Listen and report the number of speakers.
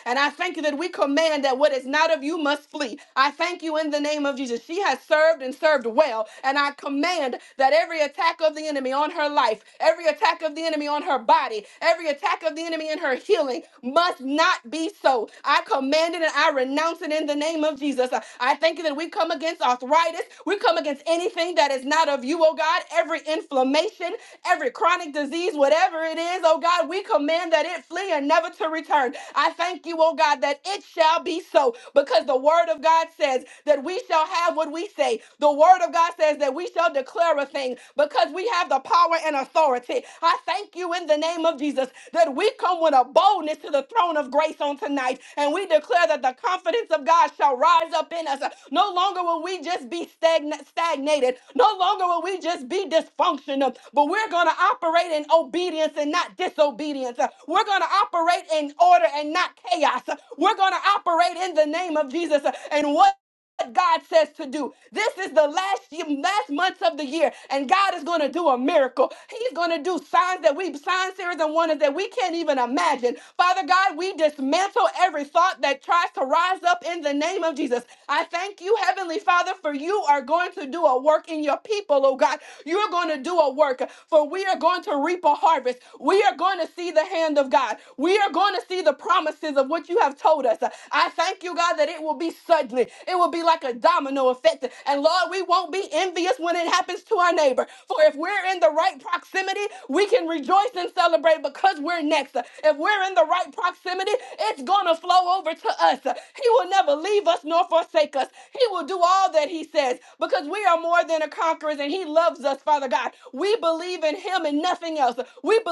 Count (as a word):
one